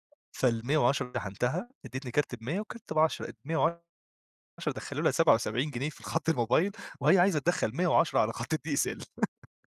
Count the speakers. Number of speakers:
1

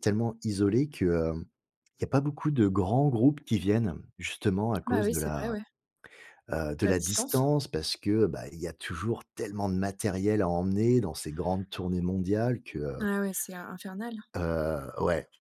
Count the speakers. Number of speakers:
2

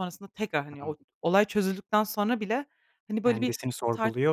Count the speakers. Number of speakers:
2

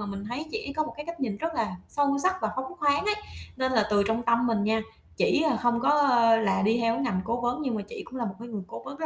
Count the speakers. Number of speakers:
1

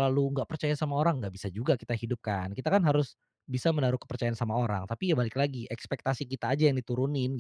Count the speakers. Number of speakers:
1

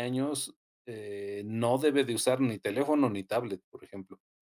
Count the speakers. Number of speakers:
1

